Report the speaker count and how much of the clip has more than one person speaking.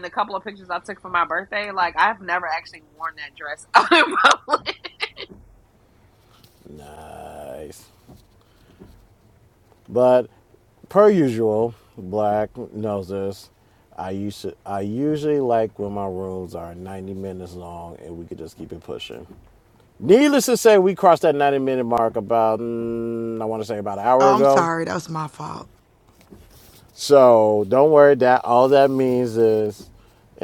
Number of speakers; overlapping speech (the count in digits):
3, about 2%